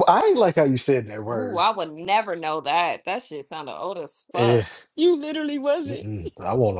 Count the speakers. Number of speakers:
three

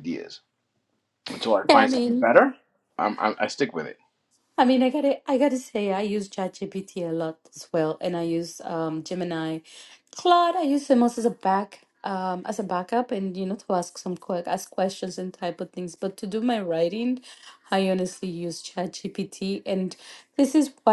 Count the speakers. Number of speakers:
two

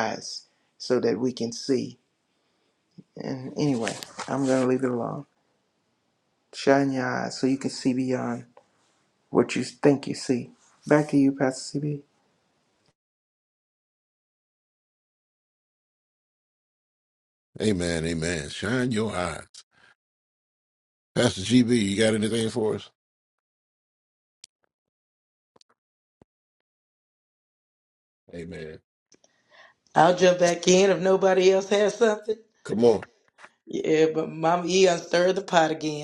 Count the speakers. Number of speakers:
three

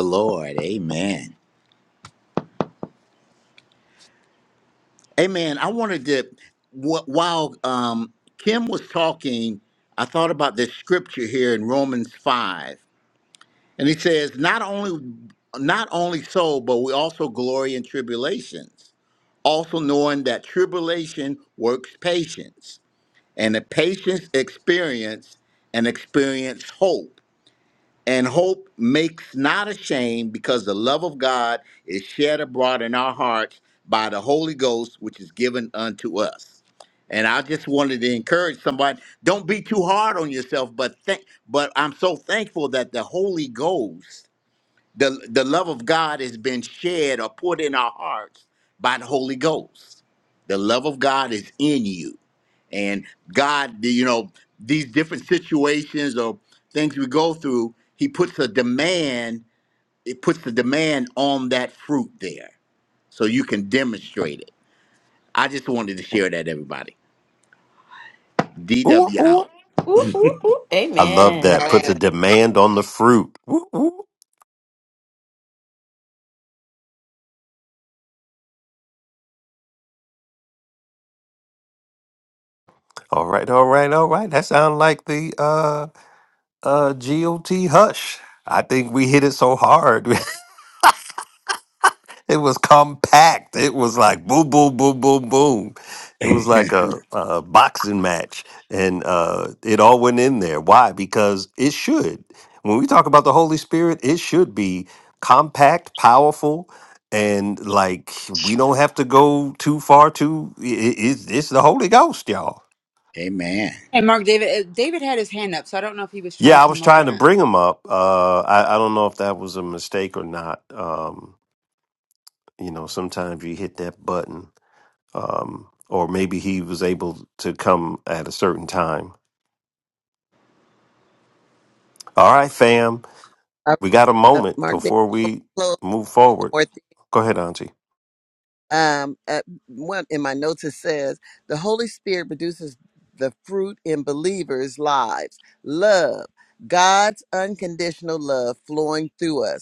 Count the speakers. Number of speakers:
five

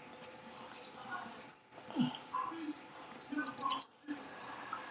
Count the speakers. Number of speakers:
zero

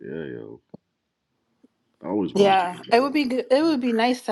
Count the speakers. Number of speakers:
two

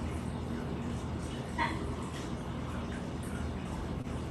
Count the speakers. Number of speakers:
zero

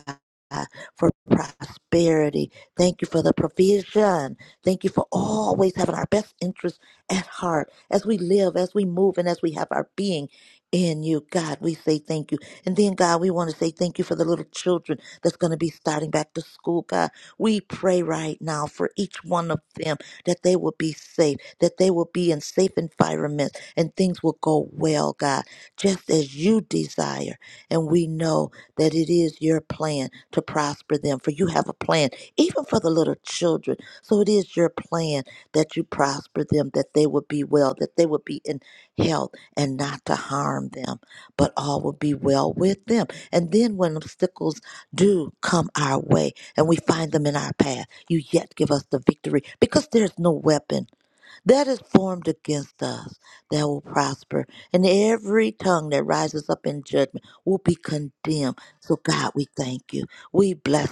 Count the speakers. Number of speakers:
one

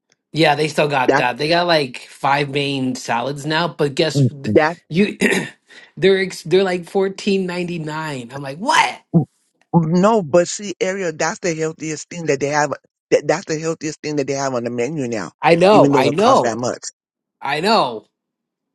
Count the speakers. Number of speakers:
two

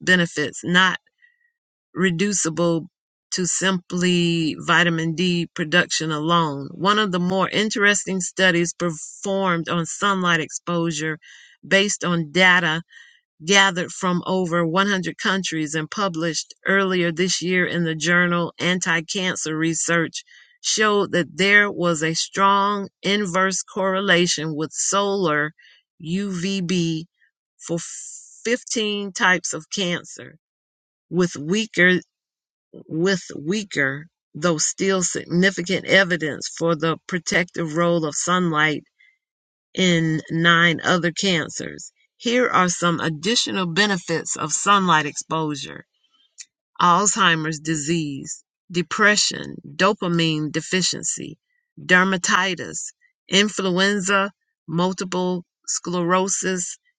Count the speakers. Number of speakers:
one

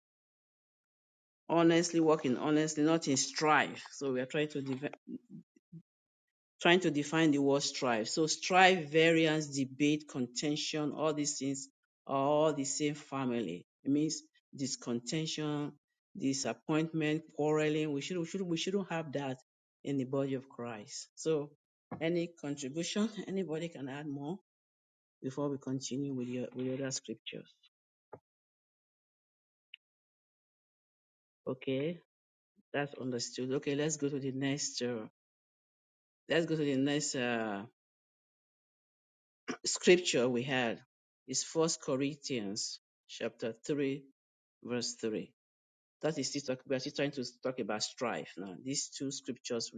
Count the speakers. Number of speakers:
one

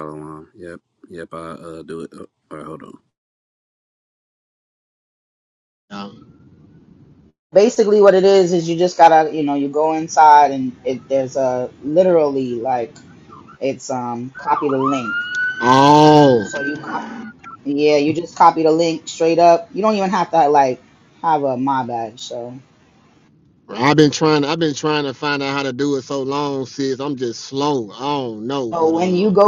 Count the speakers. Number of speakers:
three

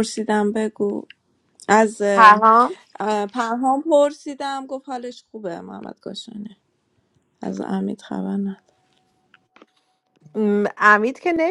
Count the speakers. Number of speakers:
two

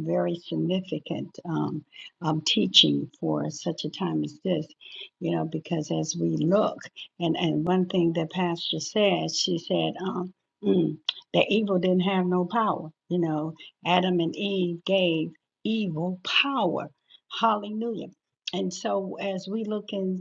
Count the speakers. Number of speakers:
one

